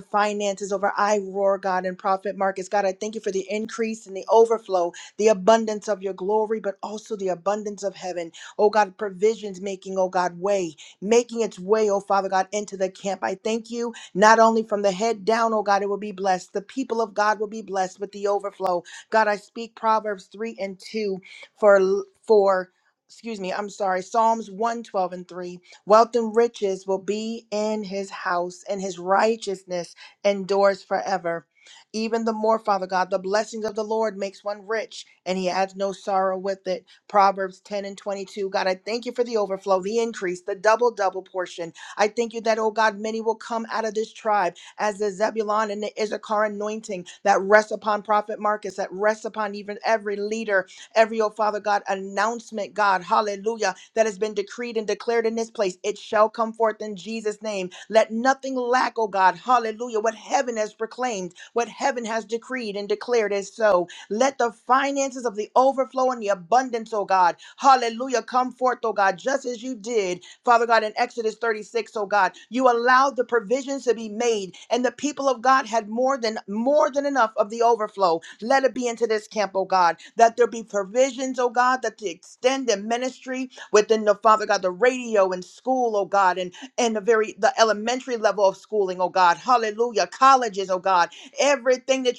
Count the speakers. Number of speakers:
1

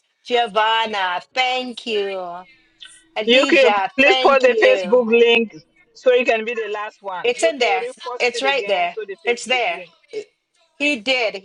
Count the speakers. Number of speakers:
2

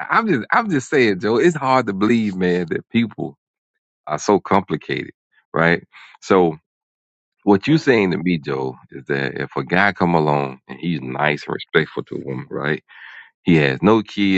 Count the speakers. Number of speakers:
1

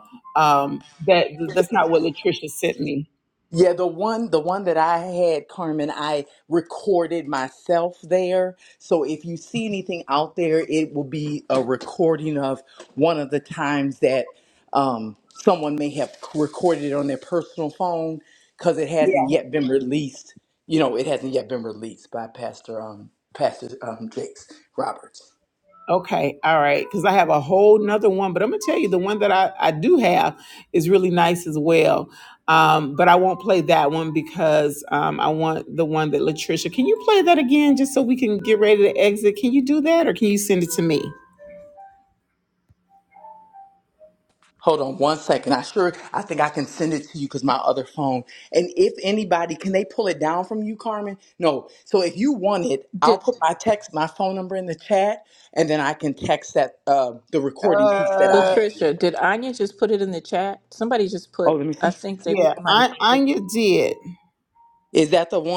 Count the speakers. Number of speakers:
3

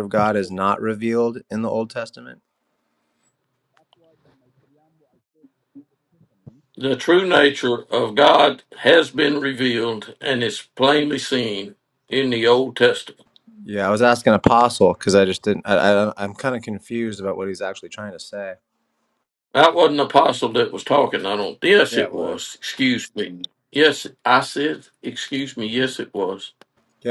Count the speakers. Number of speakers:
2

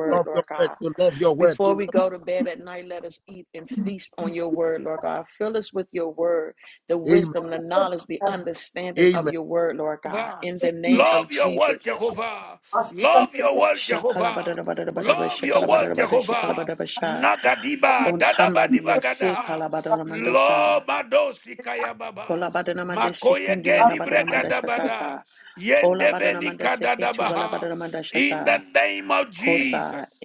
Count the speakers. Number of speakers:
3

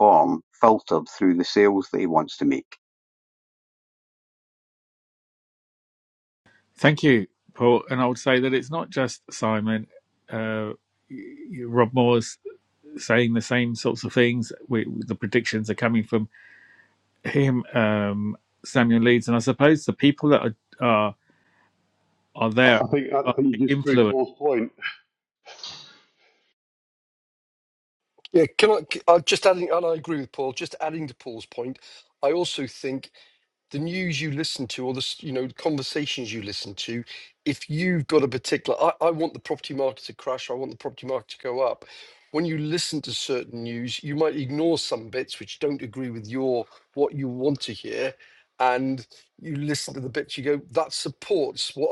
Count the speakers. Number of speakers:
4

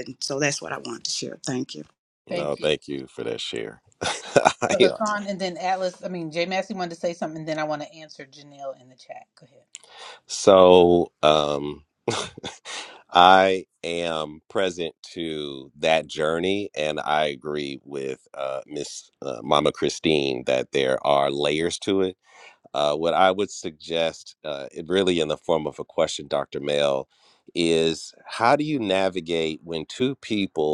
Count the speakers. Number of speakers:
3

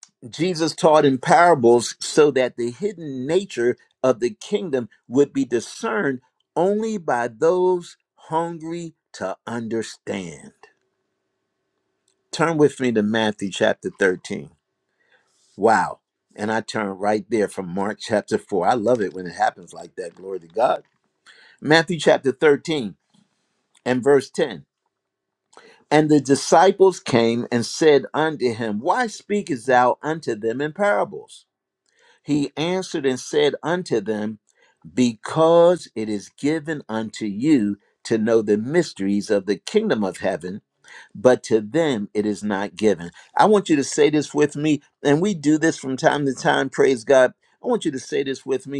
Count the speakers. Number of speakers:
1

